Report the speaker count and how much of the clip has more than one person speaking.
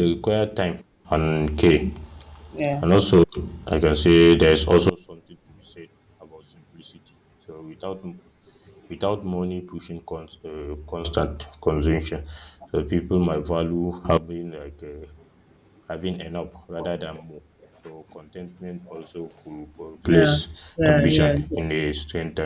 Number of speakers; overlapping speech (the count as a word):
two, about 6%